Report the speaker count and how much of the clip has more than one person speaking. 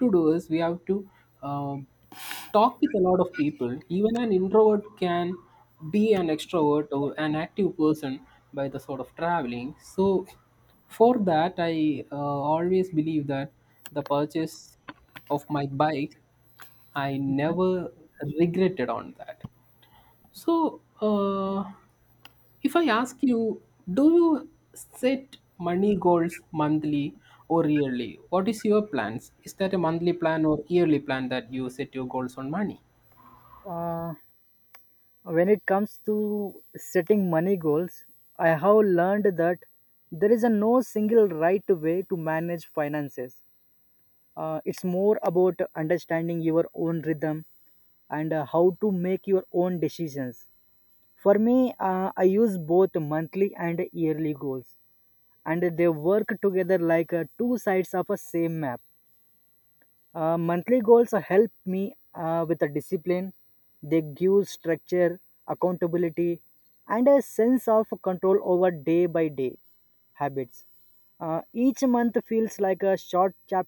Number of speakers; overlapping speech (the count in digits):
2, no overlap